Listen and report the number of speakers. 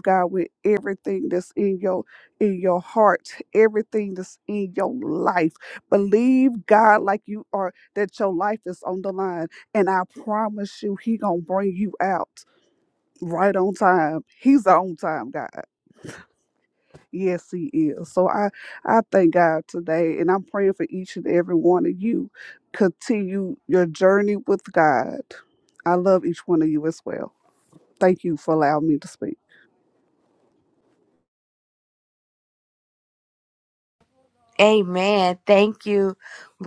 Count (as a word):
two